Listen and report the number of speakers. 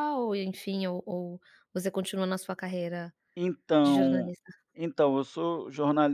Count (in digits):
2